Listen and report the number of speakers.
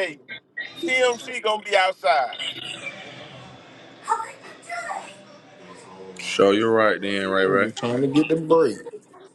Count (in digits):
3